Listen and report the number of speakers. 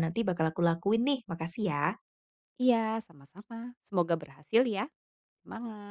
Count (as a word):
two